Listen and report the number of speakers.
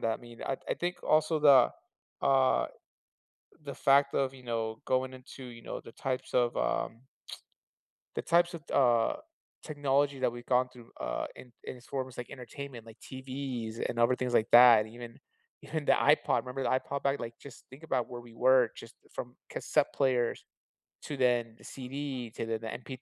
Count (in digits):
1